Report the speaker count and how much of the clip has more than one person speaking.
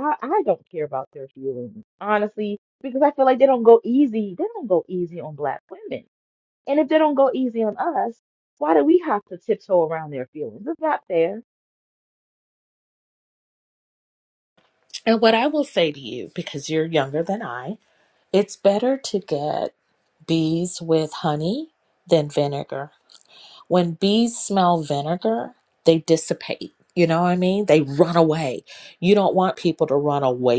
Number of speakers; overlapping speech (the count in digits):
2, no overlap